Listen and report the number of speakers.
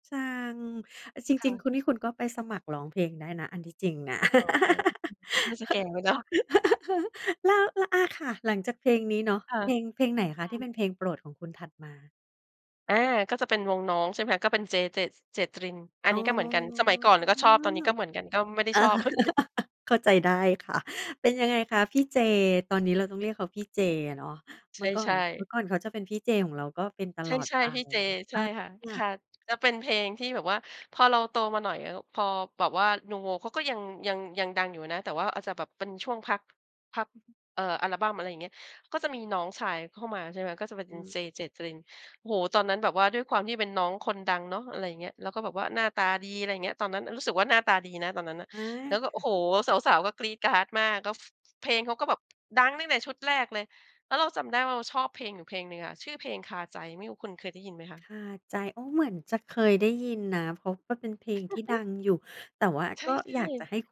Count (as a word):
two